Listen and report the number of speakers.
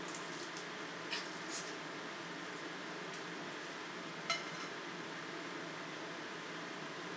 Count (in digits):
0